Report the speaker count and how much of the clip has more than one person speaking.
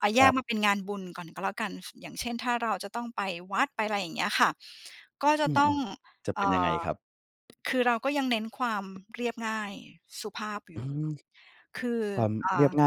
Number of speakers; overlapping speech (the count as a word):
two, about 11%